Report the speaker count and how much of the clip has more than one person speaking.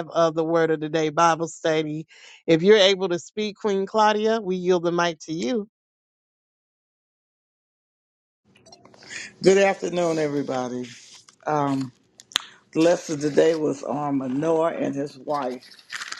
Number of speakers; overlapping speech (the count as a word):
two, no overlap